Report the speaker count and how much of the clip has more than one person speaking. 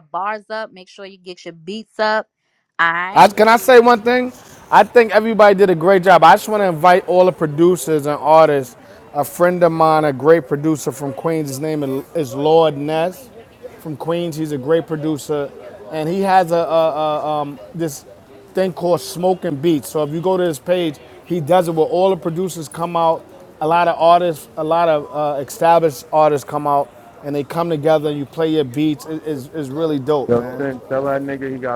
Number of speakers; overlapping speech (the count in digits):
3, about 2%